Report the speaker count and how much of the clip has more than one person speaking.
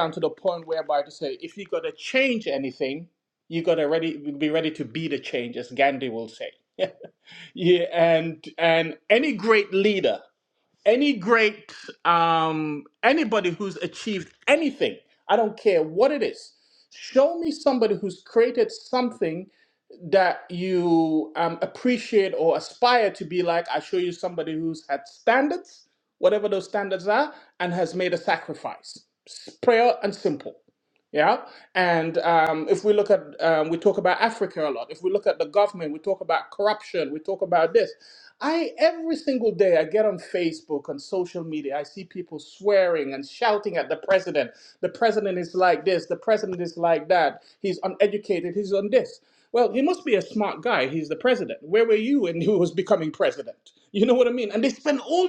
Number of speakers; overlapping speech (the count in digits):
1, no overlap